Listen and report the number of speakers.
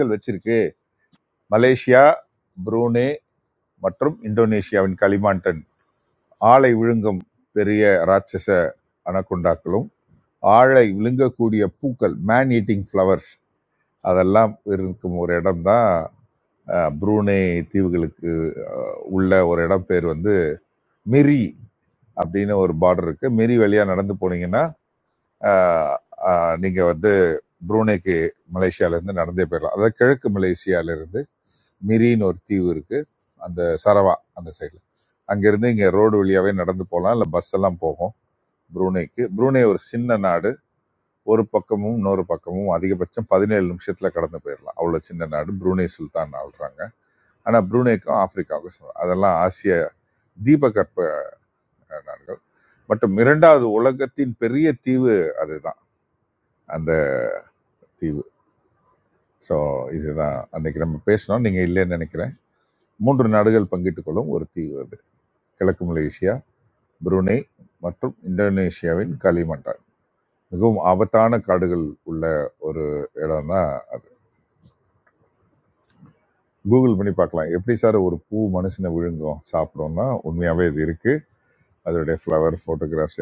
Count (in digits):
1